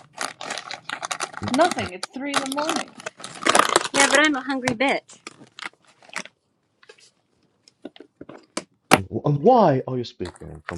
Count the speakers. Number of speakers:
three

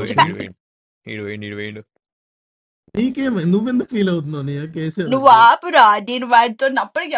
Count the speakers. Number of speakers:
three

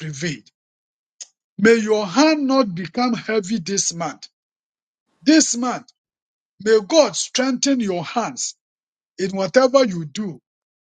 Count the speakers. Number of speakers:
one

